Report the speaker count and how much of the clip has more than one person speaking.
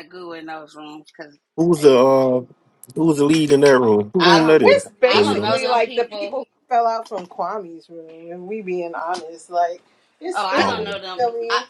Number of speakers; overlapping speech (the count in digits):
3, about 30%